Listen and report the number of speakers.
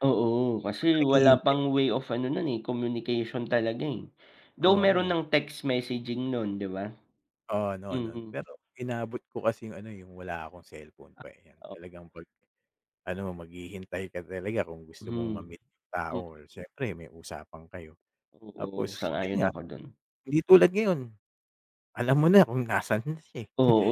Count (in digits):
2